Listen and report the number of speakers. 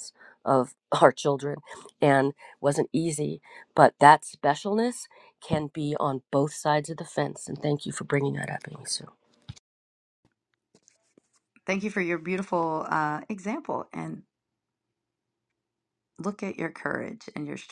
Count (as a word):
two